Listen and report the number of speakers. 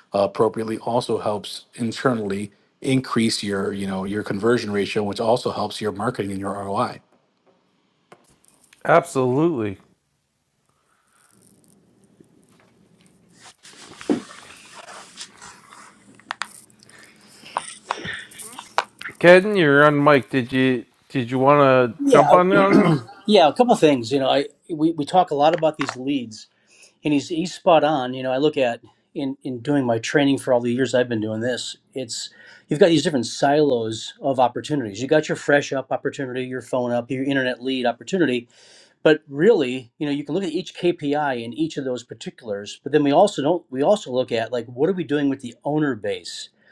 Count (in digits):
3